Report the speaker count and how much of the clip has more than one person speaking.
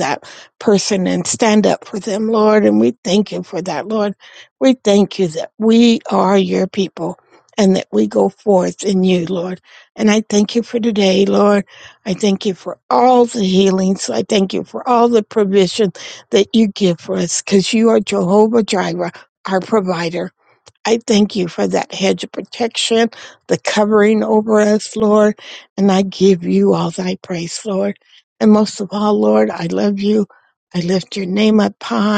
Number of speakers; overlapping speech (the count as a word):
one, no overlap